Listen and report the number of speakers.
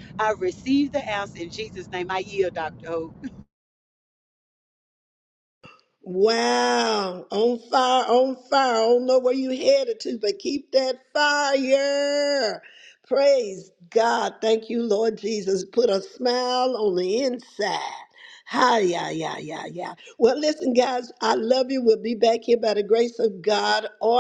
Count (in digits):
2